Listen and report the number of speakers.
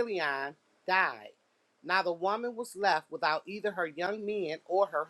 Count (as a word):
one